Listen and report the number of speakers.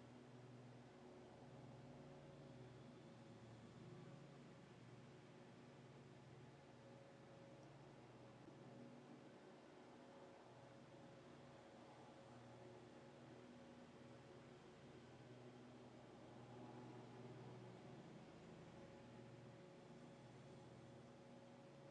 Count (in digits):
0